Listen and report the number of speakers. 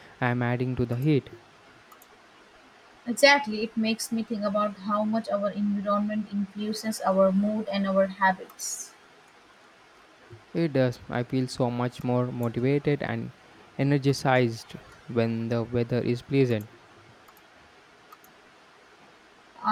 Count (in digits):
2